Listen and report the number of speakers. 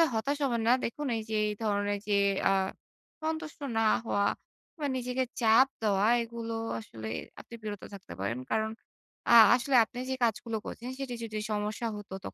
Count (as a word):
one